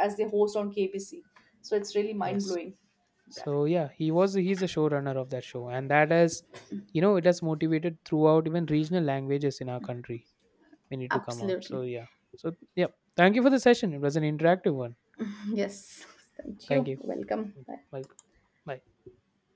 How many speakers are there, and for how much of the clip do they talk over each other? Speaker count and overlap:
two, about 5%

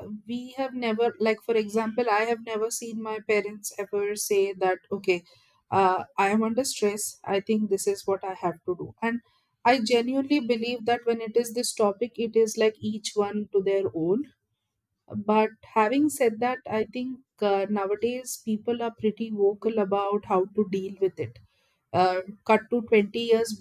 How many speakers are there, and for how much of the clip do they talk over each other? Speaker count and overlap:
one, no overlap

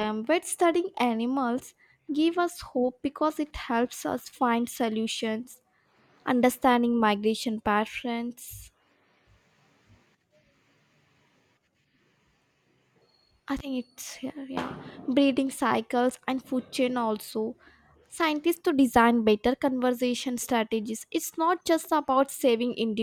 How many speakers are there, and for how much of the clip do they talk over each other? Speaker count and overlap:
one, no overlap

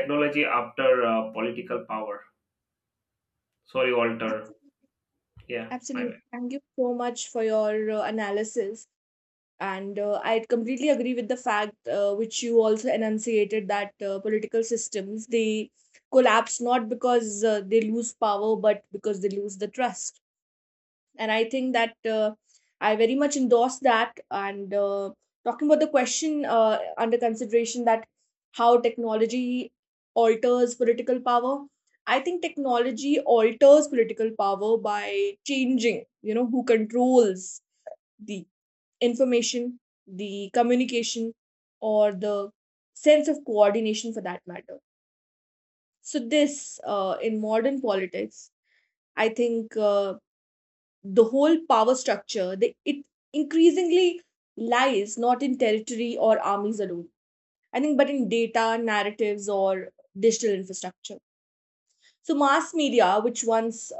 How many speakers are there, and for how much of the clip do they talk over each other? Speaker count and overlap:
two, about 1%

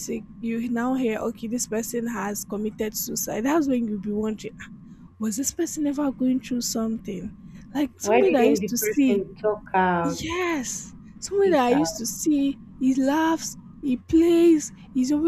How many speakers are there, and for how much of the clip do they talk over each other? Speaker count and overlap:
two, about 12%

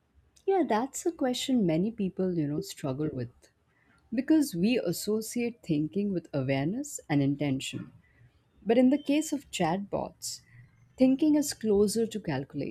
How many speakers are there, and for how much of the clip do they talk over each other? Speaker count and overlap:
one, no overlap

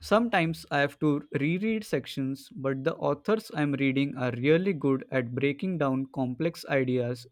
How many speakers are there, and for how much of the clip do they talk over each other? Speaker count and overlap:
one, no overlap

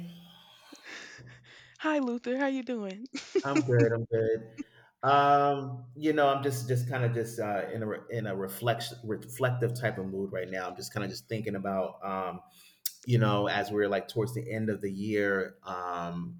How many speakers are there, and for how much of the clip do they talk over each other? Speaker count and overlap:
two, no overlap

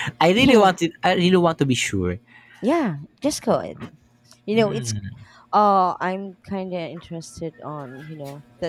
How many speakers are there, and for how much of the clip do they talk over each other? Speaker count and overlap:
two, no overlap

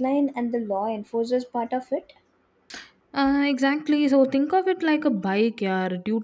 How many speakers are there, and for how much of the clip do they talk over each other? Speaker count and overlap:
two, no overlap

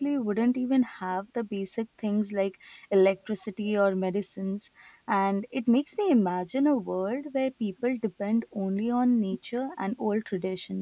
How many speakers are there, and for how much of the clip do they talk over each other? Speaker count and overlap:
one, no overlap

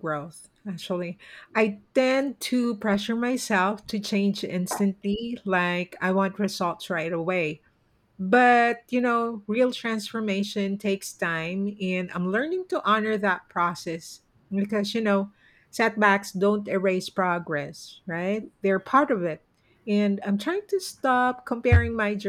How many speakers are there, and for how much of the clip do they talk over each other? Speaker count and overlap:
one, no overlap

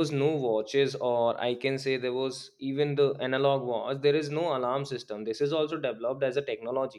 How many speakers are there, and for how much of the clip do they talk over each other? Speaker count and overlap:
one, no overlap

